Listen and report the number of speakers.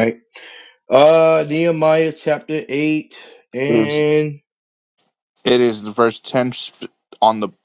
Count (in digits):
2